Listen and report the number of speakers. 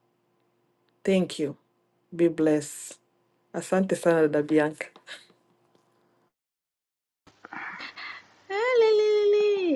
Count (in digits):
2